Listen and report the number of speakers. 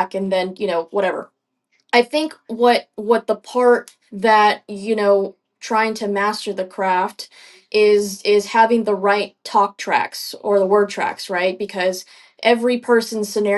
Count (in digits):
1